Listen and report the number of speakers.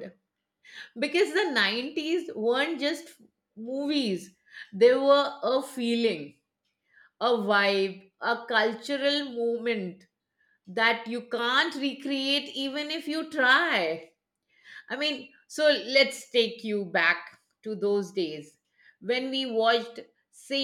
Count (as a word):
one